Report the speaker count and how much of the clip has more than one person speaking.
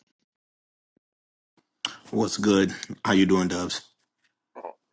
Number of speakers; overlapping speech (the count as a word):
one, no overlap